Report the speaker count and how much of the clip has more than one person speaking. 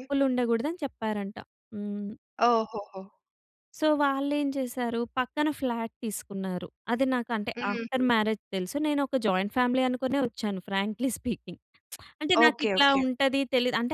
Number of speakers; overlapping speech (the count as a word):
two, about 9%